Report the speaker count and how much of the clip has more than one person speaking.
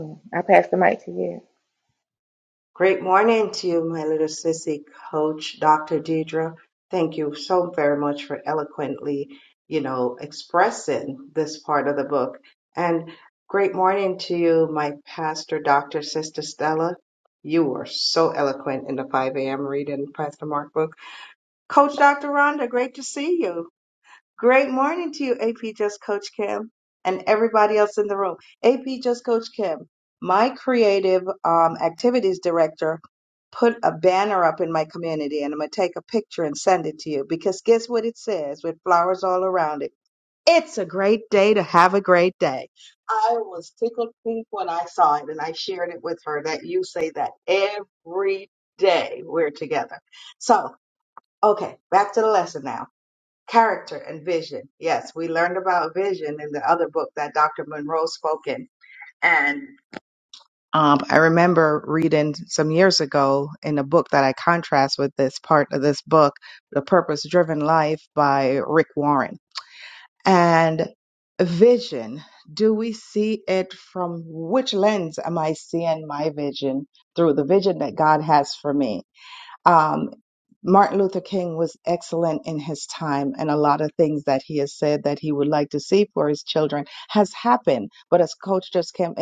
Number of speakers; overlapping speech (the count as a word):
two, no overlap